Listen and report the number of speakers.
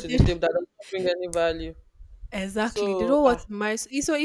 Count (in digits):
2